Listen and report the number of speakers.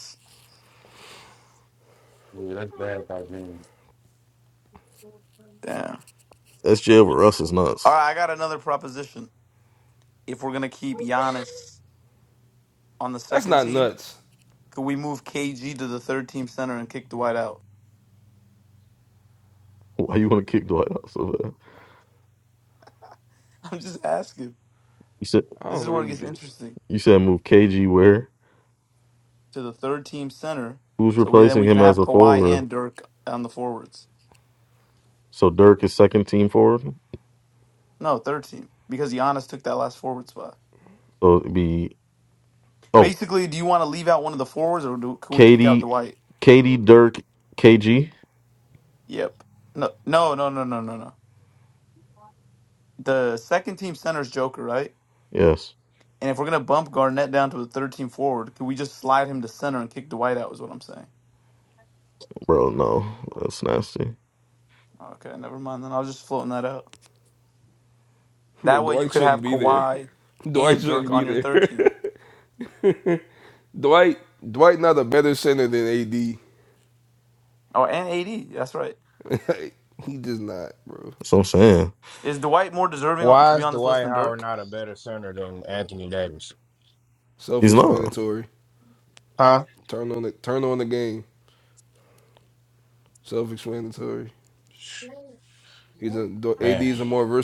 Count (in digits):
5